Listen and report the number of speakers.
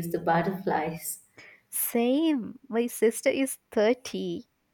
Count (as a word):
two